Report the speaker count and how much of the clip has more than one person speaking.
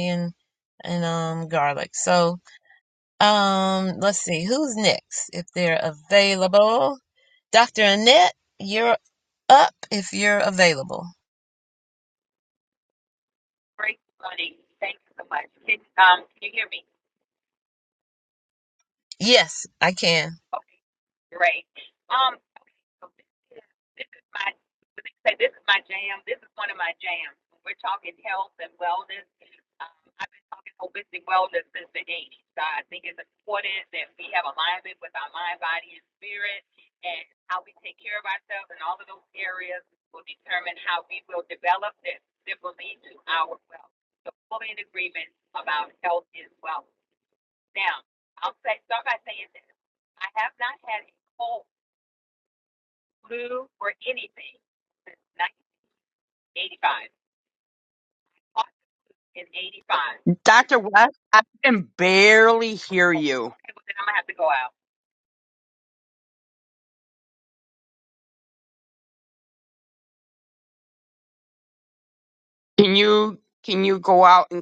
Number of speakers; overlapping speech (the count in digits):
3, under 1%